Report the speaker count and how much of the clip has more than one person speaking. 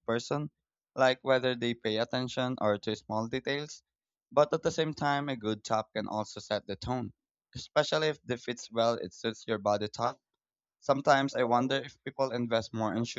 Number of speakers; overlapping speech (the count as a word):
one, no overlap